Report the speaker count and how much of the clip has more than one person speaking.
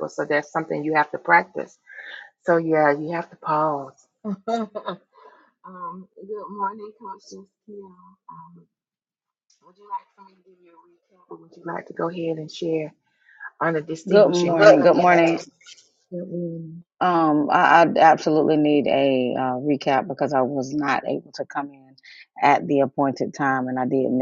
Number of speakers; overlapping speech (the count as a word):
two, about 4%